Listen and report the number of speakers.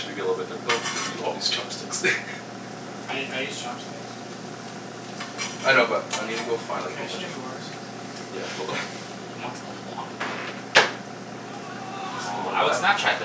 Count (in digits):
3